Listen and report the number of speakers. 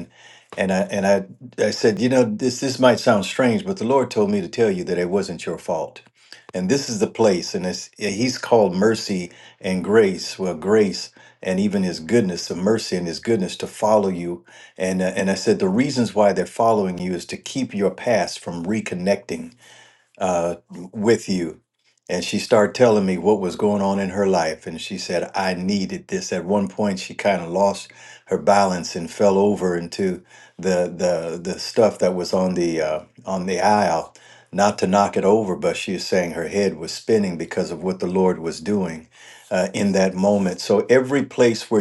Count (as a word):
one